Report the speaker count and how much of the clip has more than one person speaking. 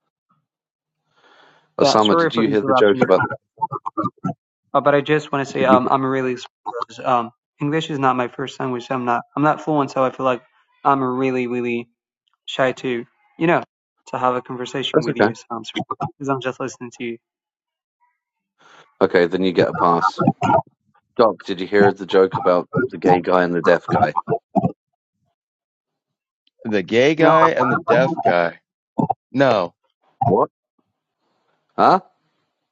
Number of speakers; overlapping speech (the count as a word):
three, about 6%